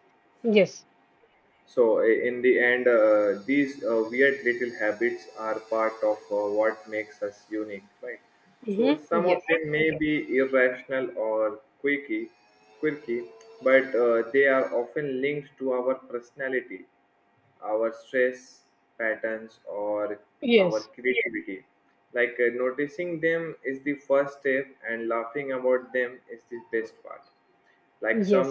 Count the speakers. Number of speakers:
two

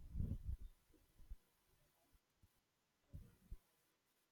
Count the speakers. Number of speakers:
zero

